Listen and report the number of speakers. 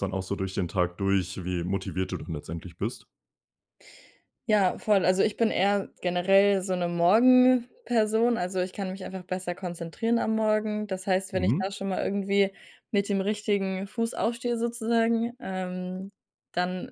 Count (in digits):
2